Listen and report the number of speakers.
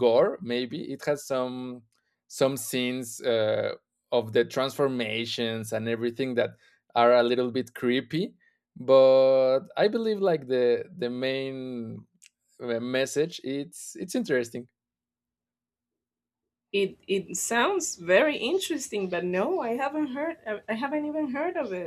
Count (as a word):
two